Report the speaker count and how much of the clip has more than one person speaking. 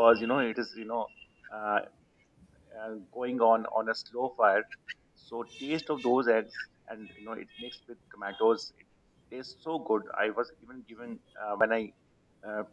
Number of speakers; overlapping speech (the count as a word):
one, no overlap